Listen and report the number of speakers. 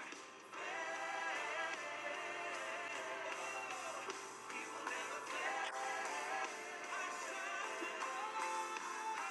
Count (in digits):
0